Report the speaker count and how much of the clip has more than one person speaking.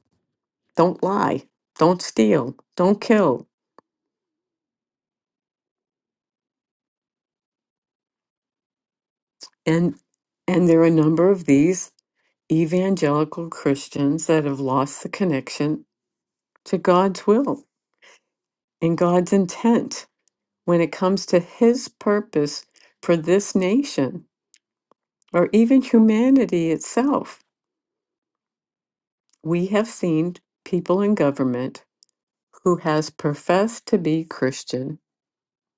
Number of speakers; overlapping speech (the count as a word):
one, no overlap